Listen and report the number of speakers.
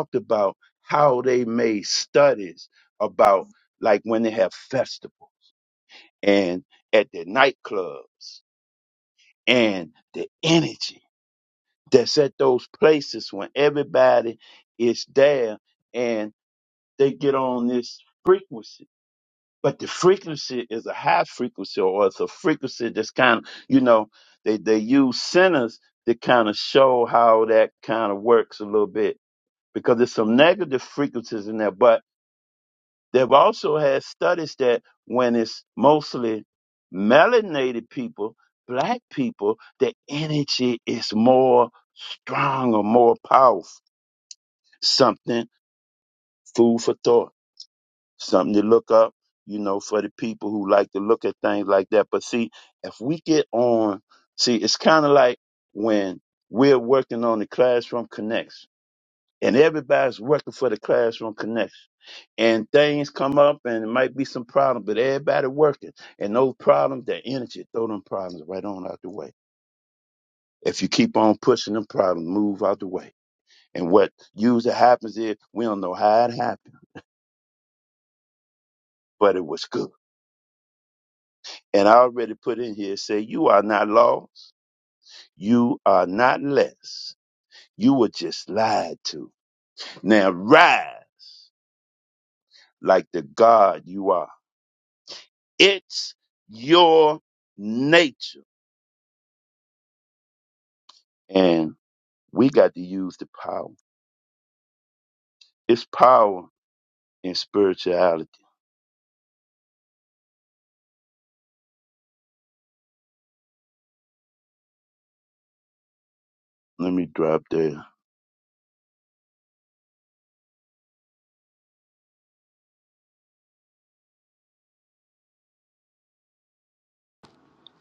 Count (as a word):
one